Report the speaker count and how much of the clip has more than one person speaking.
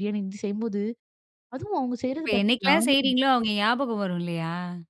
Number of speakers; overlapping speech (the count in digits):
2, about 13%